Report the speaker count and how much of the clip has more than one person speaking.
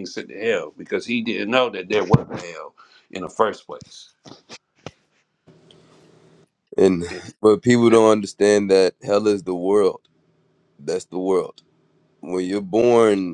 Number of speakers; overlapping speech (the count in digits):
2, about 1%